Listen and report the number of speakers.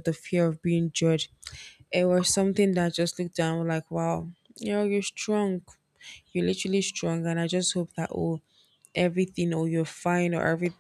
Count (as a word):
one